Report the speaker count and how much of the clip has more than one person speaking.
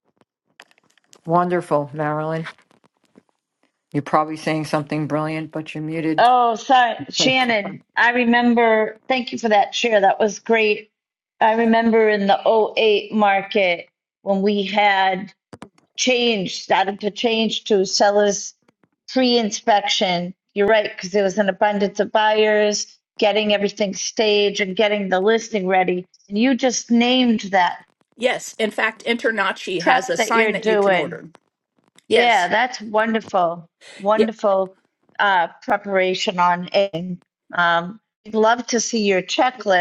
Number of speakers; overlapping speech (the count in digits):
3, about 5%